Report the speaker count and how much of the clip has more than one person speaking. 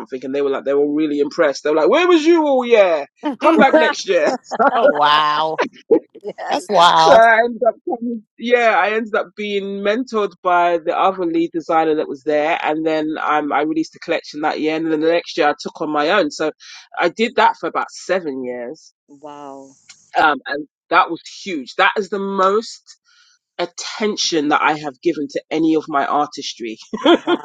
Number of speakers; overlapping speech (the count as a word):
three, about 1%